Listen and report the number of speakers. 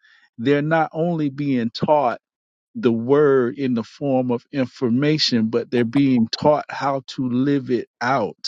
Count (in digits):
1